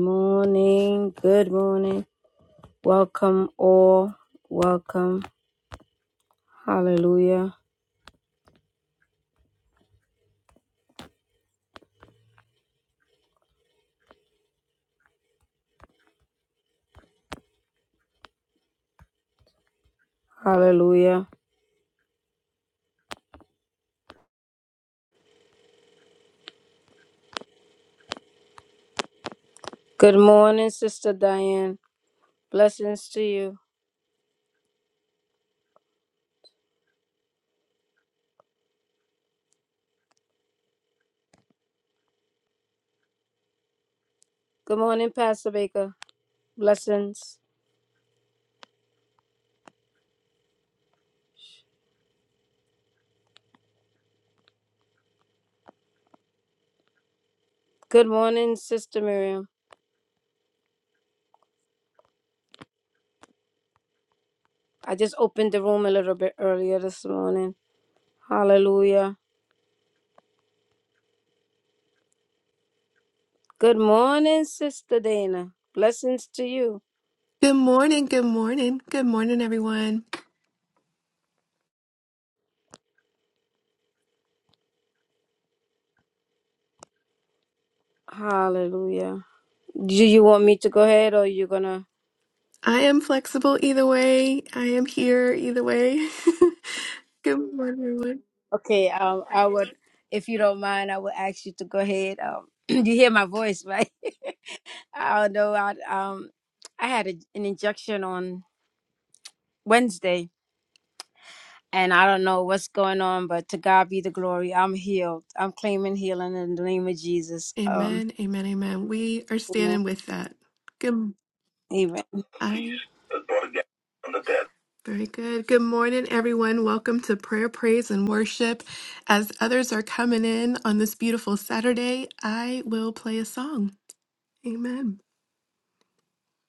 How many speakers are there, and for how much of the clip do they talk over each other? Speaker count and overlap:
2, about 1%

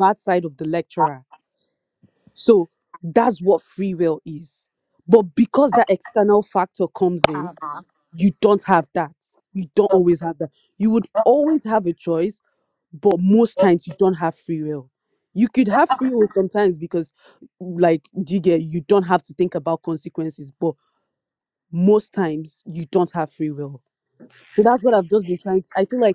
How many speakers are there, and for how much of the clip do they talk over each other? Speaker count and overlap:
1, no overlap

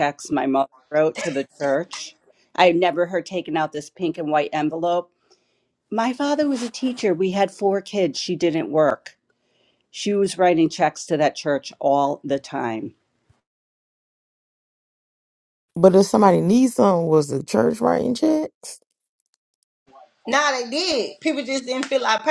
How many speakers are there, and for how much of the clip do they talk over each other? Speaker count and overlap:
3, no overlap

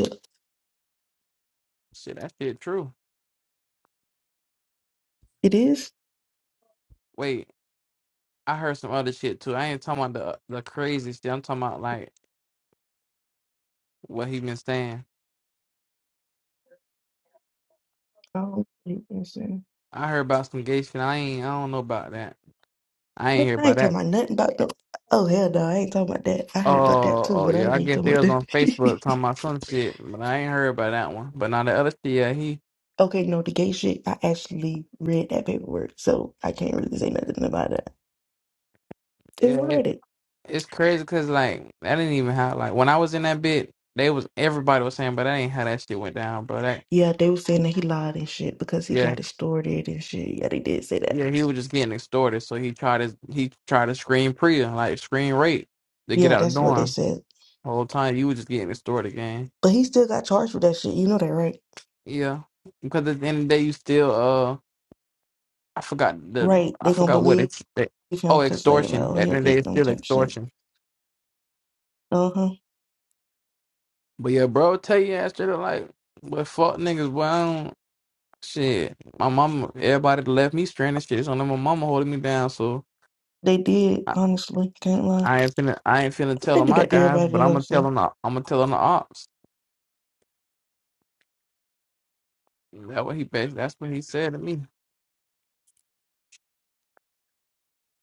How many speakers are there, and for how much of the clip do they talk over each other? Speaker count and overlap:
2, about 9%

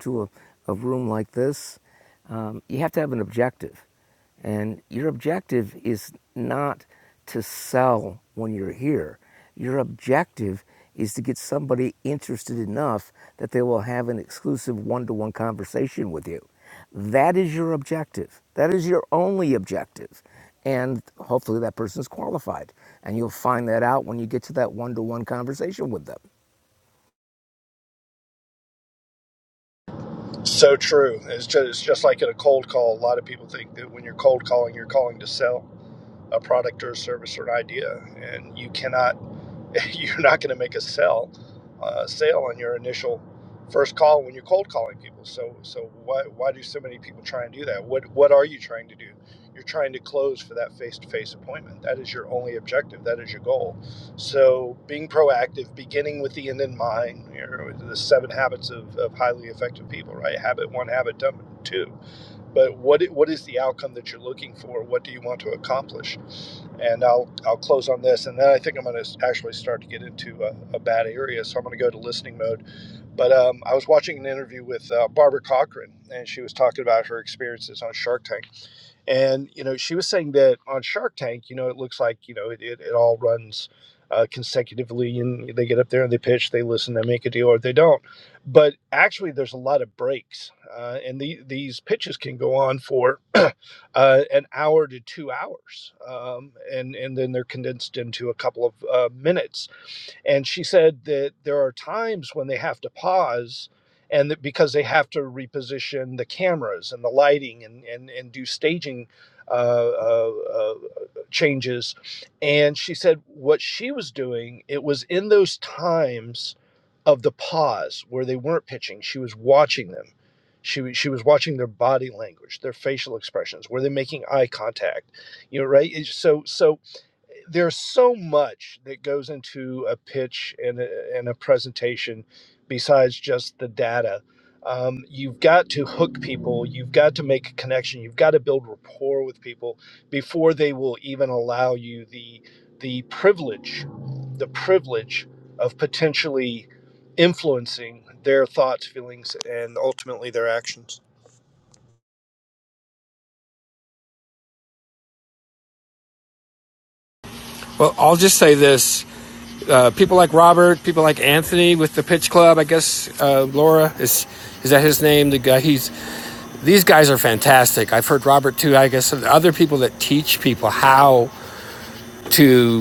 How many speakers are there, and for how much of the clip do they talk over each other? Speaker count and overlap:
3, no overlap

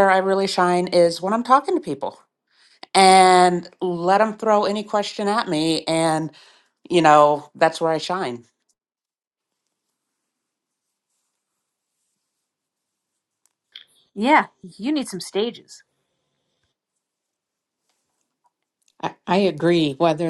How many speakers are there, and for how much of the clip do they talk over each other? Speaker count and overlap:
3, no overlap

